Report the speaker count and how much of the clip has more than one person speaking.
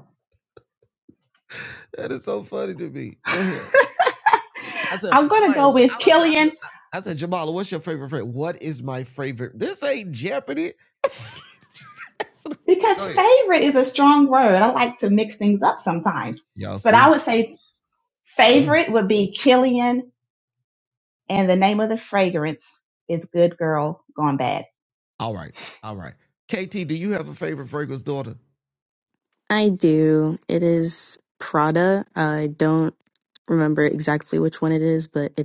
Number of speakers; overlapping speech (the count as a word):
three, about 6%